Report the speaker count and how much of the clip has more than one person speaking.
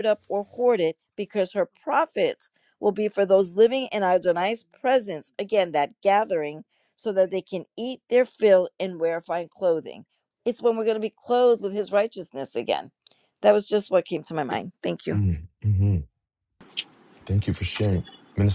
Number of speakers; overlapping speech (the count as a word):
two, under 1%